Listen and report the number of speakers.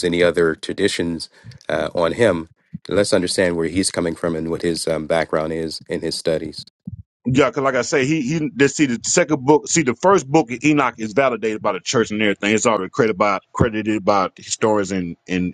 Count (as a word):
two